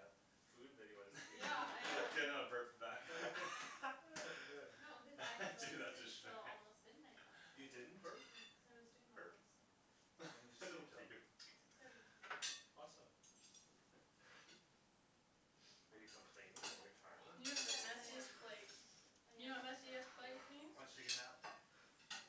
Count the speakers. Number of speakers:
4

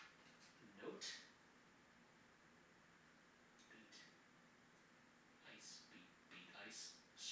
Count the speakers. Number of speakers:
1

